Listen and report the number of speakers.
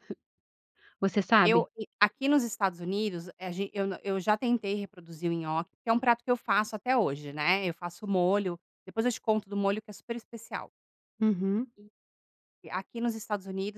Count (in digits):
2